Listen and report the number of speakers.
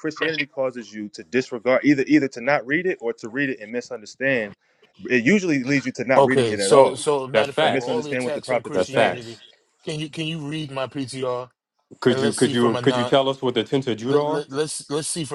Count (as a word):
three